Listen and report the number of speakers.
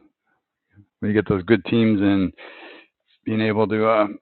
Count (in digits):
1